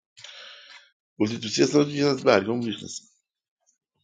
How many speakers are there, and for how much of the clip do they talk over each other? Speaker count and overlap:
1, no overlap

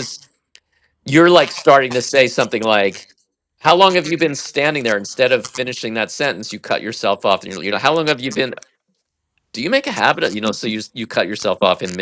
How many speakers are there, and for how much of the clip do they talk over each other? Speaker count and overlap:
1, no overlap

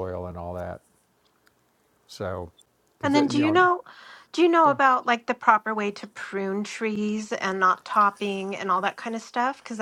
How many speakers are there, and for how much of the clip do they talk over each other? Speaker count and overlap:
2, about 8%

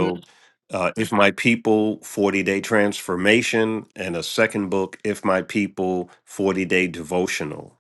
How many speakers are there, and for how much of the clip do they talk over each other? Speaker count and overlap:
1, no overlap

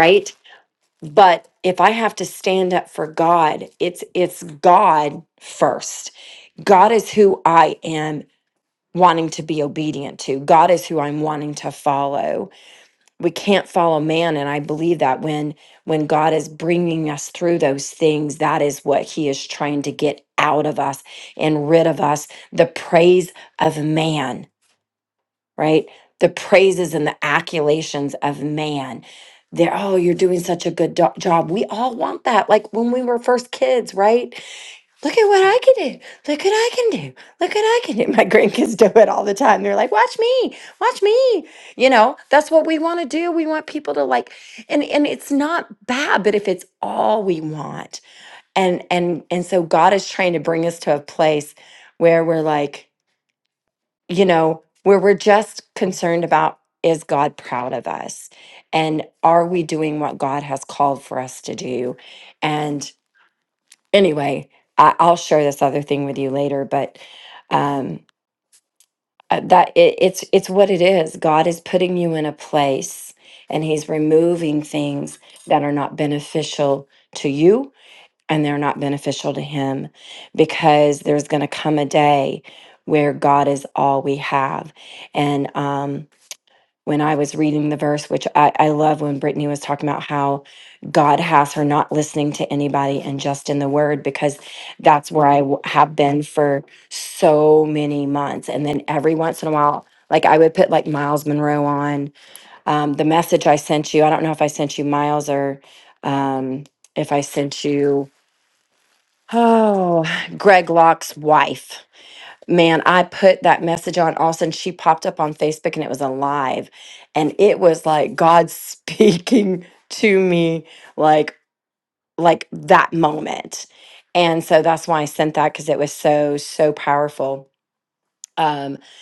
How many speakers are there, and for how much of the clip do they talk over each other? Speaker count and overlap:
1, no overlap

